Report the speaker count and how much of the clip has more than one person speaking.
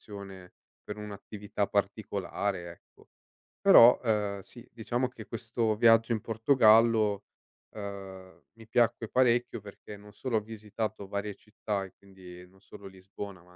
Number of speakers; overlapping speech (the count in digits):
1, no overlap